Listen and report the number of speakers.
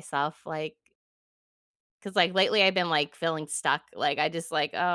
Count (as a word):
one